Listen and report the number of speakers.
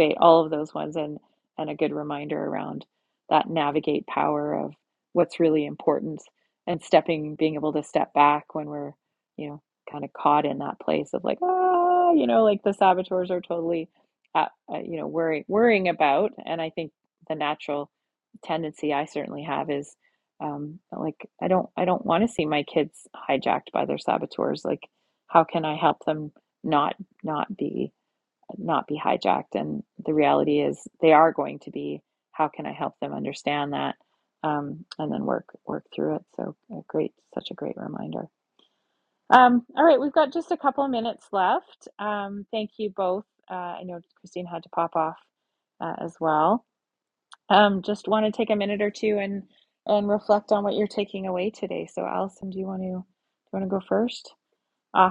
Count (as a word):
one